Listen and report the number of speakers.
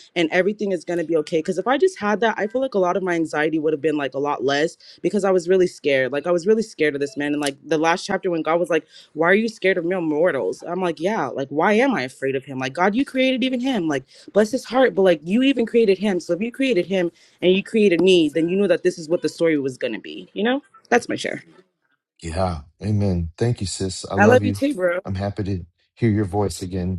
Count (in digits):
2